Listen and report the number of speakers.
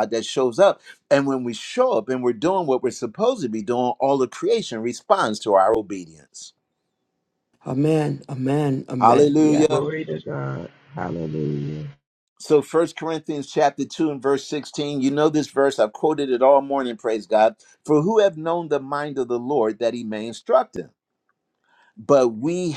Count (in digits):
3